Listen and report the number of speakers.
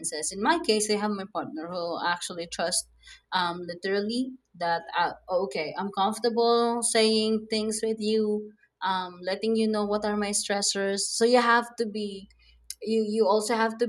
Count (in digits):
1